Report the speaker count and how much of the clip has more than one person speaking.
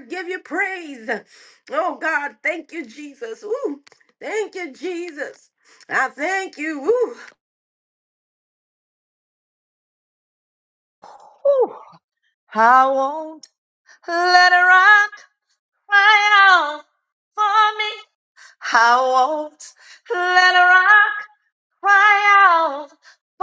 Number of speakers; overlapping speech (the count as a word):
two, no overlap